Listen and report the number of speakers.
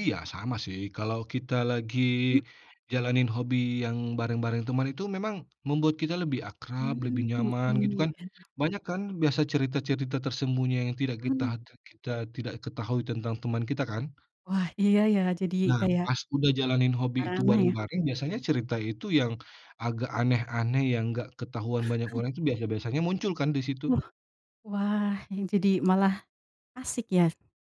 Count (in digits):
2